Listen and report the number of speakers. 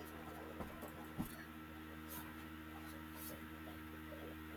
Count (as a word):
zero